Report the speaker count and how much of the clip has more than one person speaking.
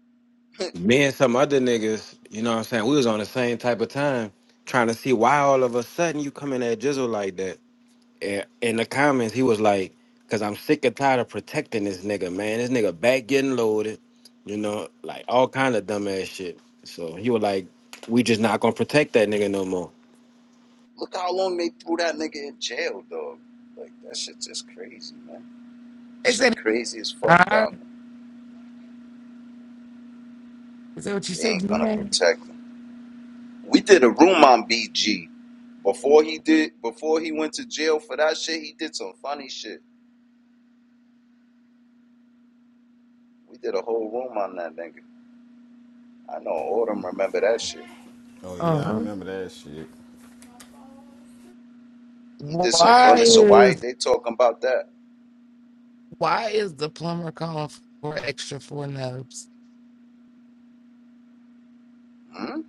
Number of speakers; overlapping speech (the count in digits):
4, about 5%